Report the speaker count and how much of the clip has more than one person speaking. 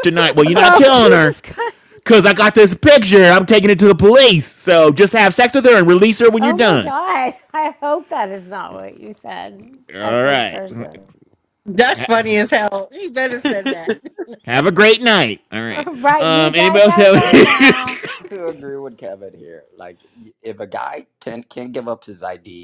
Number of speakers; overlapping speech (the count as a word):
four, about 16%